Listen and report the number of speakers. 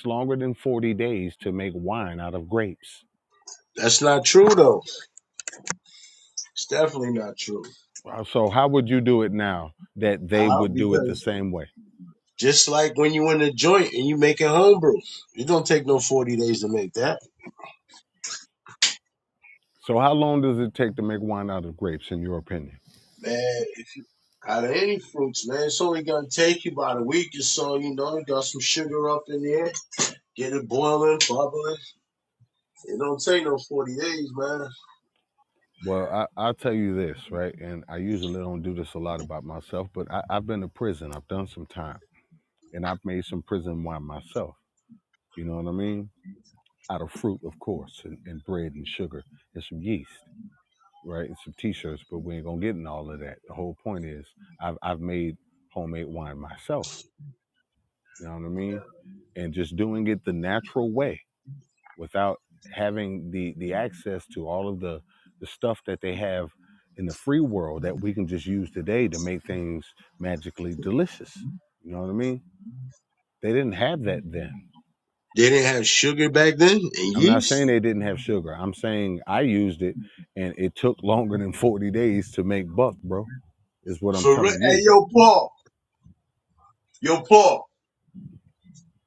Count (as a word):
two